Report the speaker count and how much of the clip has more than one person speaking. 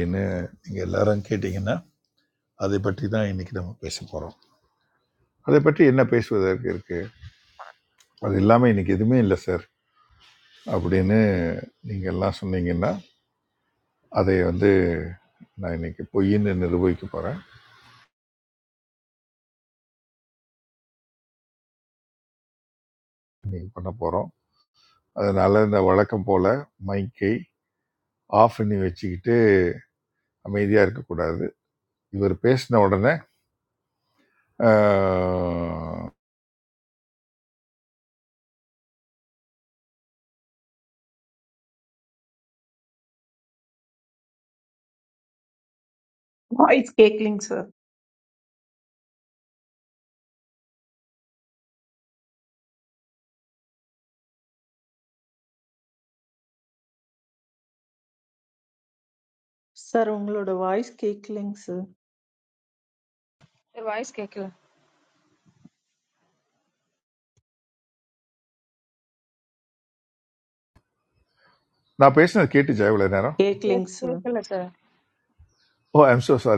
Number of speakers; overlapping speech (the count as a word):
four, about 1%